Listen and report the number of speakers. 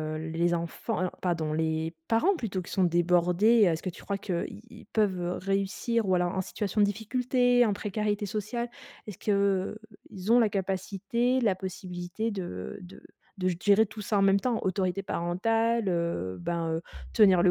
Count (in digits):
1